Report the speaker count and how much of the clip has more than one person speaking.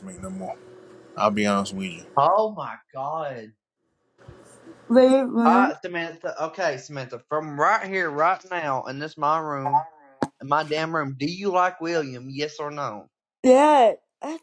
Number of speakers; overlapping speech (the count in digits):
3, about 2%